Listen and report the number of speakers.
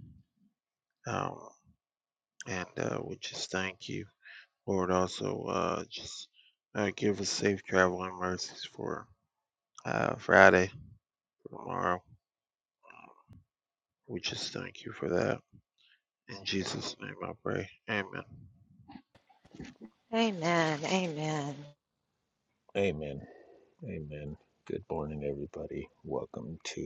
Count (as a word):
three